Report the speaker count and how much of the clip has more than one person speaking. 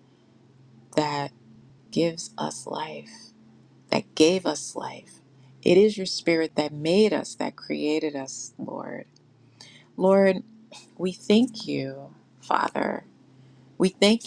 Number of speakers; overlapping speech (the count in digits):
1, no overlap